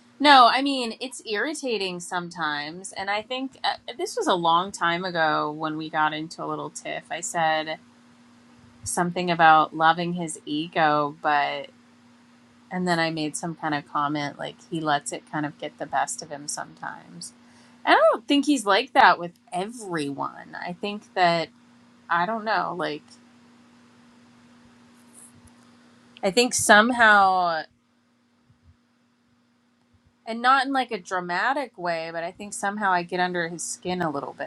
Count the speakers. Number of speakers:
one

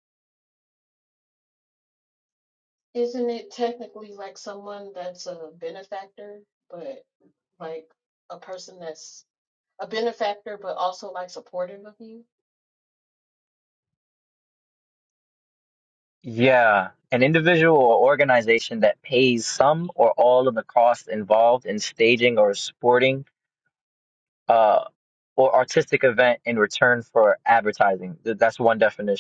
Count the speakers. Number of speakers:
two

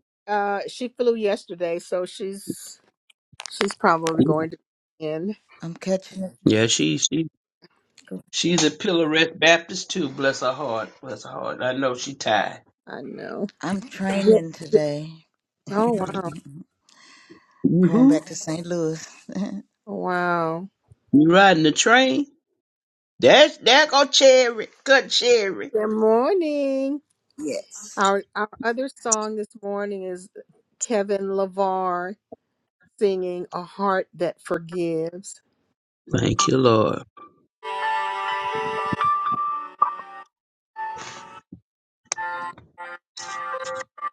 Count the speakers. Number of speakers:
three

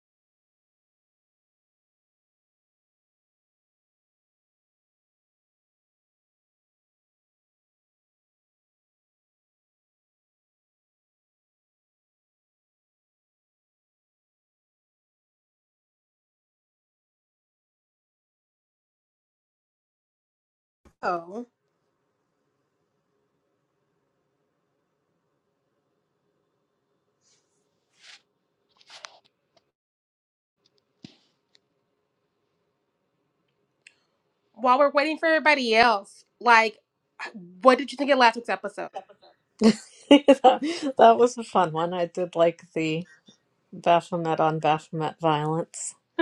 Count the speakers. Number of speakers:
two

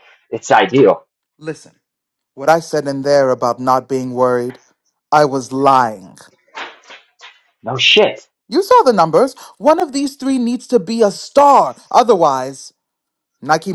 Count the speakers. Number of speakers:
two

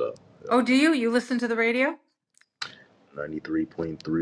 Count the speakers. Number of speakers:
two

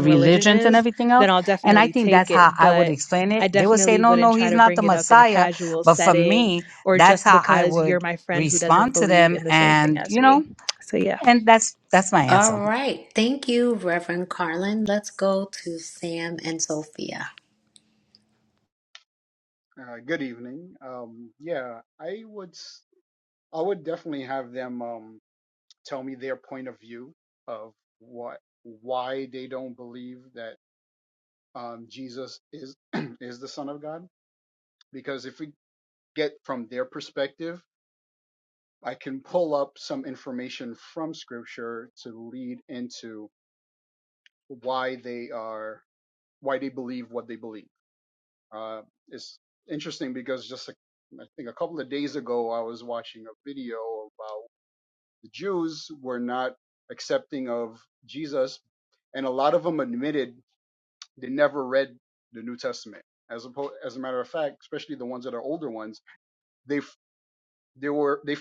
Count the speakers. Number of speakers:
four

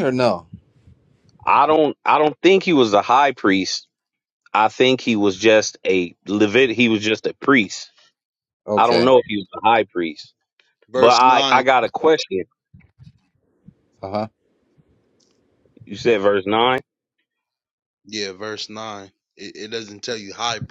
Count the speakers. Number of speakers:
three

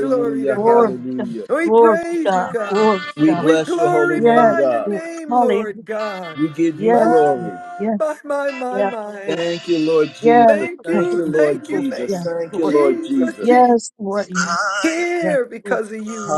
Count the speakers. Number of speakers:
three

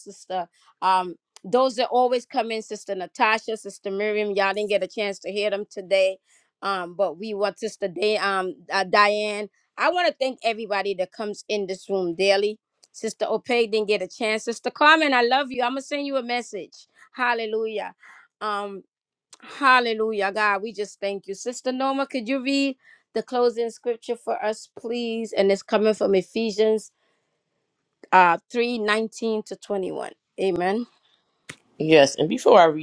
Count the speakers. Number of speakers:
two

